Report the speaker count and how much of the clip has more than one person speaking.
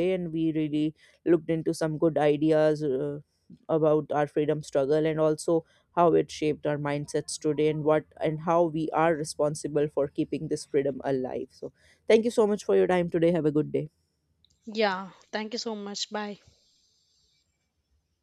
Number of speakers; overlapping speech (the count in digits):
2, no overlap